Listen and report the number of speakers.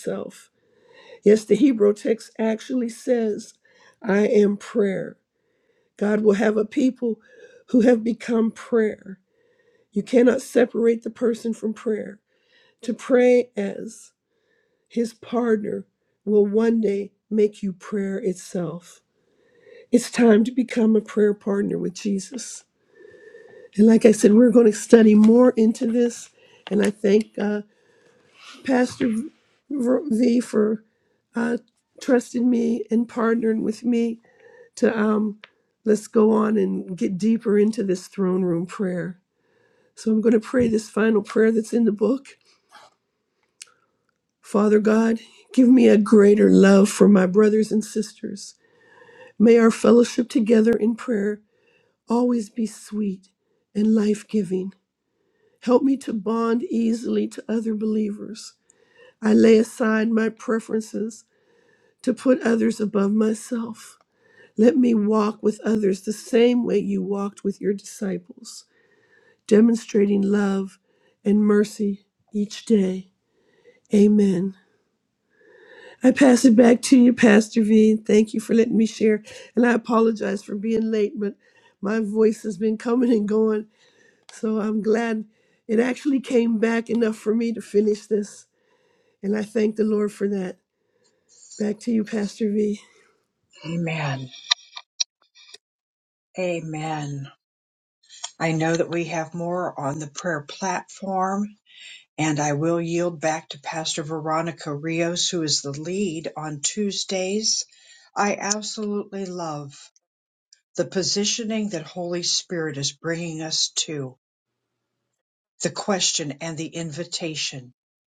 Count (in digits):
2